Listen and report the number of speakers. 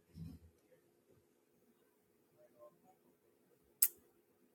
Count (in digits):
0